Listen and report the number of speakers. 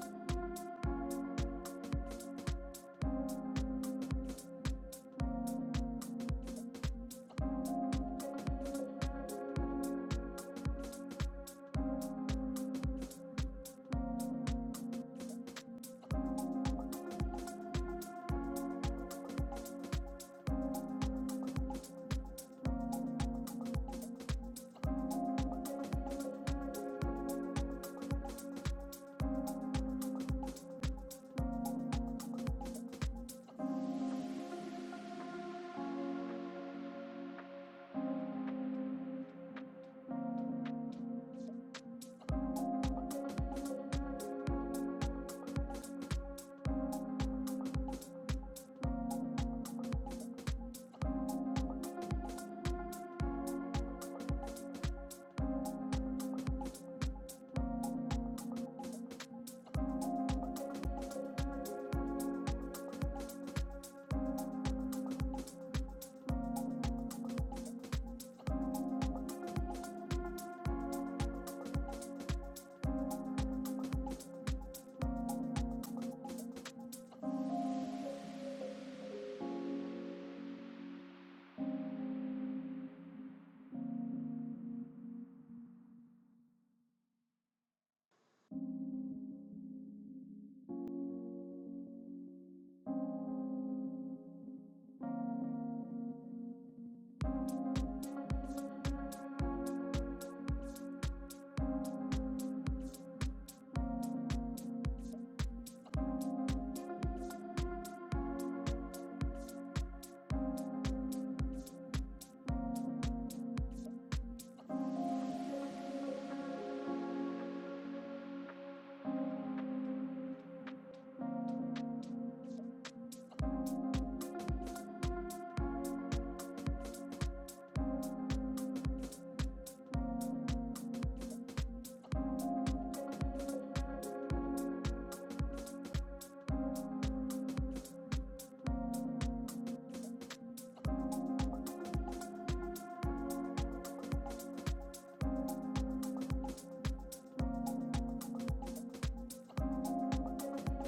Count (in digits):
0